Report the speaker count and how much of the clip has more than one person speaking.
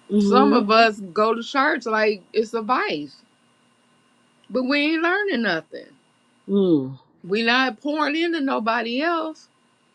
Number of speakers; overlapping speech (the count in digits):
2, about 4%